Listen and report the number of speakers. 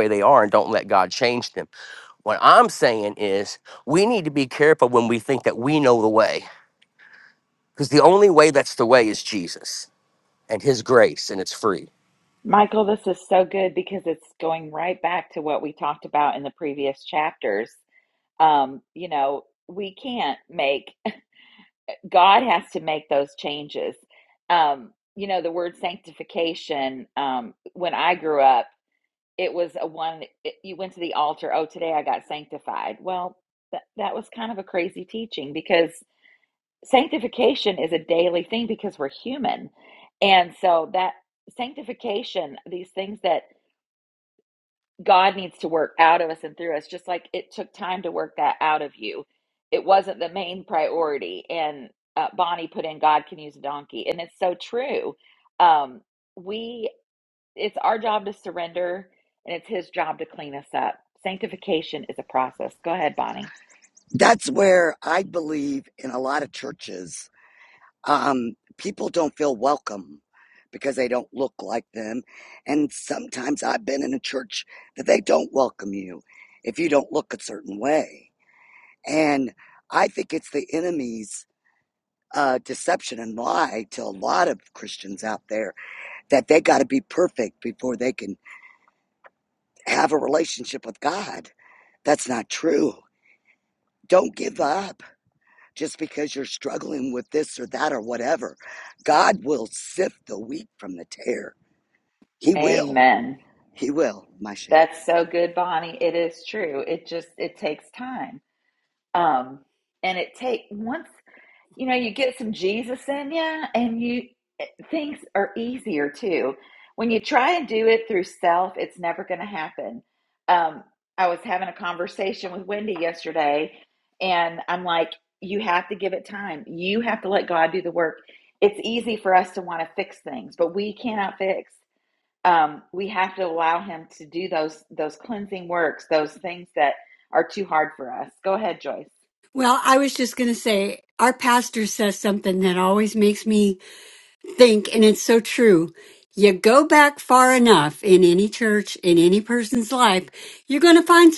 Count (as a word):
four